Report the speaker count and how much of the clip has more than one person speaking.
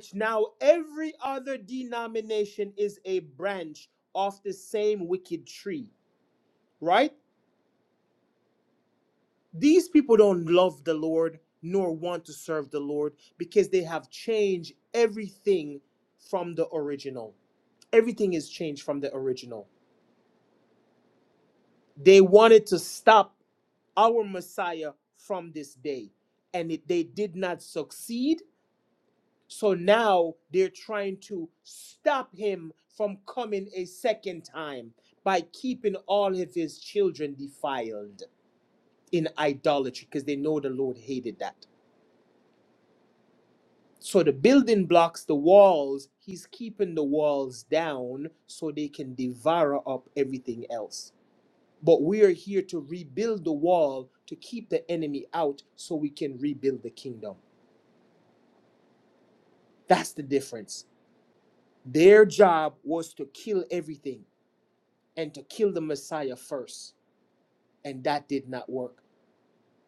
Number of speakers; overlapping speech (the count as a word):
one, no overlap